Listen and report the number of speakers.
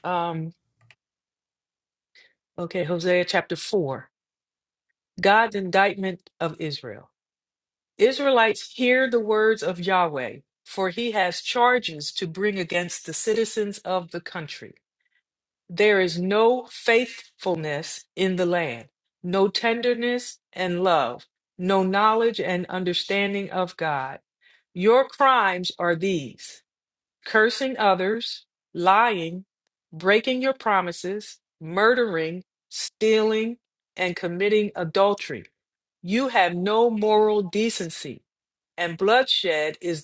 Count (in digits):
1